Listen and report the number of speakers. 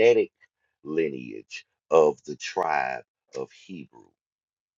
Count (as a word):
one